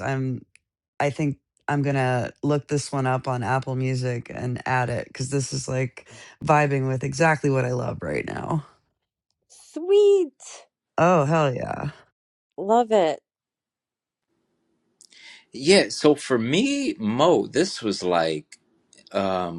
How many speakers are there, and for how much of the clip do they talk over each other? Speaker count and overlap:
3, no overlap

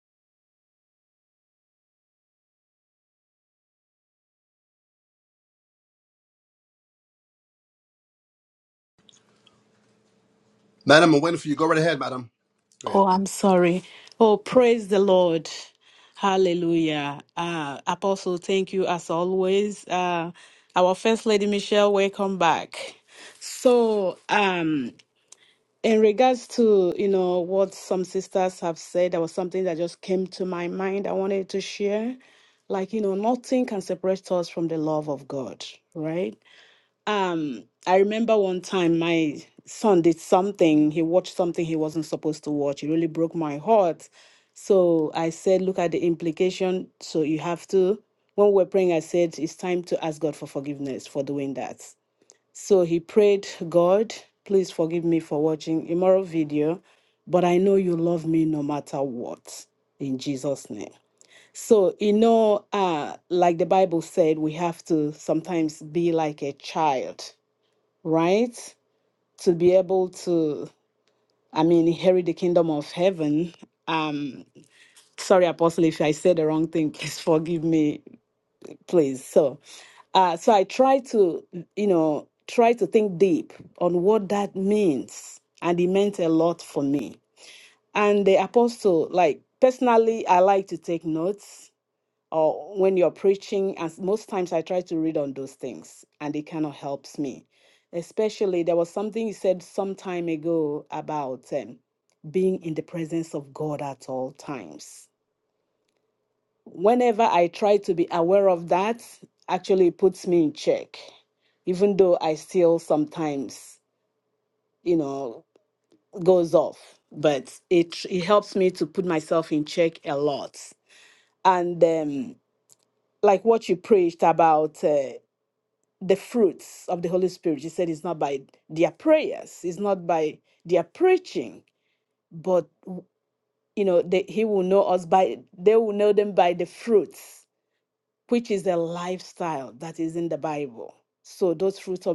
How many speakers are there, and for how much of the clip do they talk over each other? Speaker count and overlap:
2, under 1%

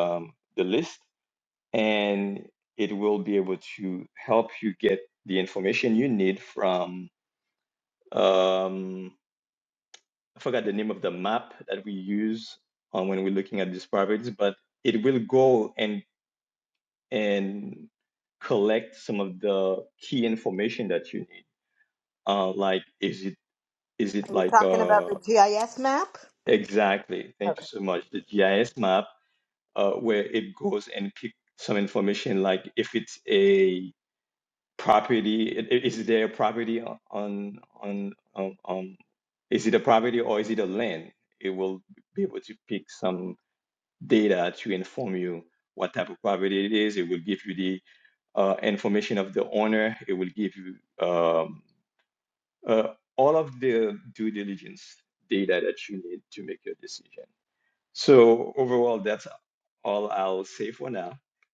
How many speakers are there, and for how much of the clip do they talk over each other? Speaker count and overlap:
2, about 1%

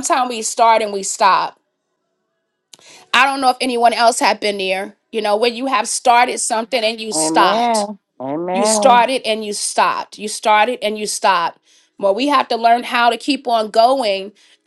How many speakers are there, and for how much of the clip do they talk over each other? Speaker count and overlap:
2, about 8%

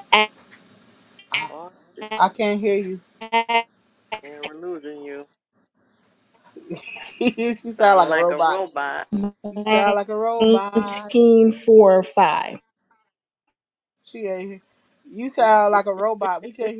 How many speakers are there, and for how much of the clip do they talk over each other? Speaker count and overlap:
3, about 10%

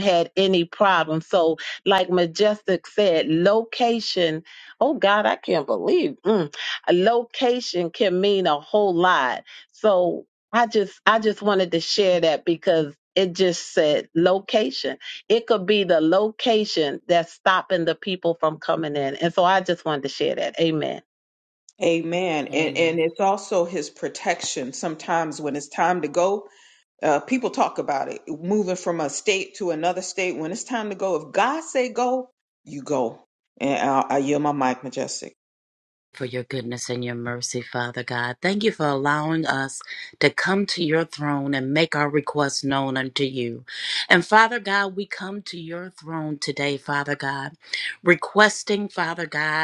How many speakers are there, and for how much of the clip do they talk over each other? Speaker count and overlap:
3, about 1%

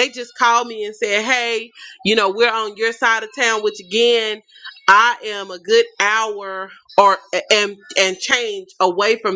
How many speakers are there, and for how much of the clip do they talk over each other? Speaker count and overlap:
1, no overlap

